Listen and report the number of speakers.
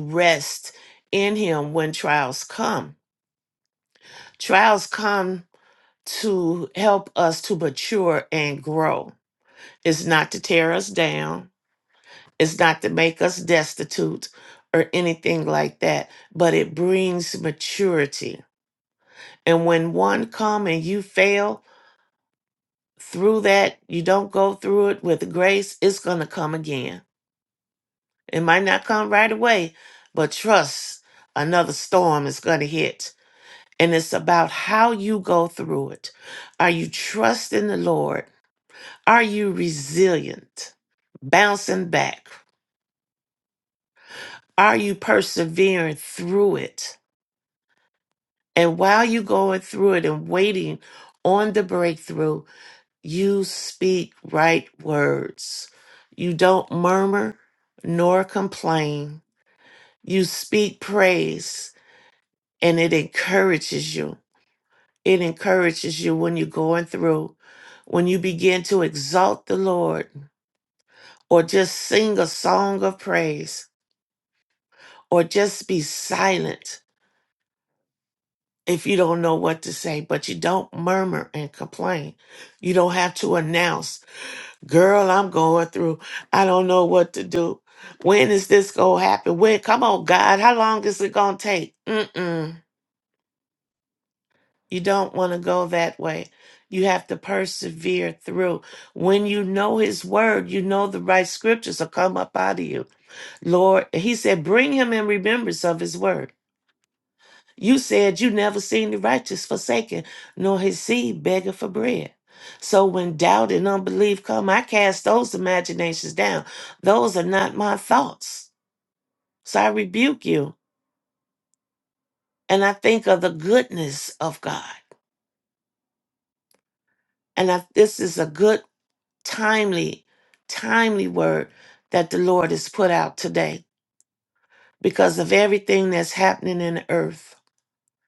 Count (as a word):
one